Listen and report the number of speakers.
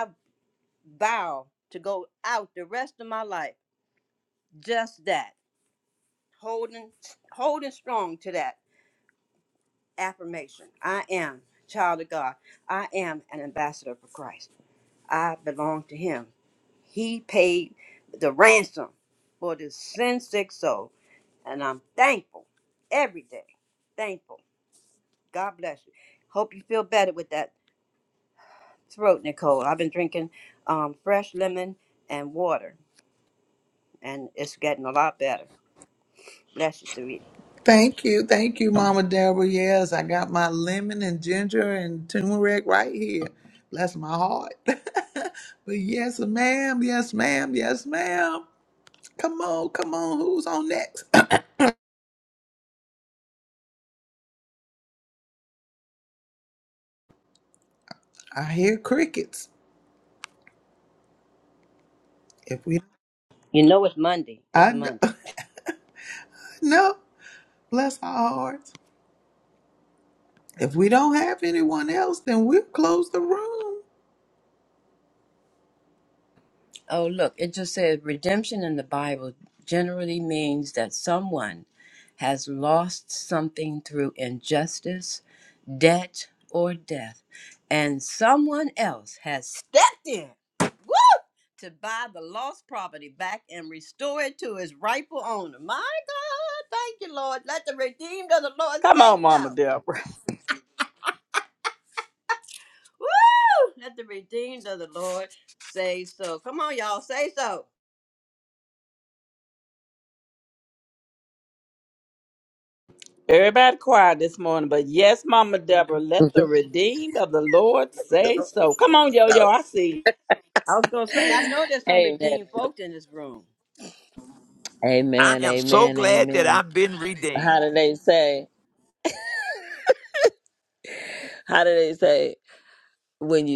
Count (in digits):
5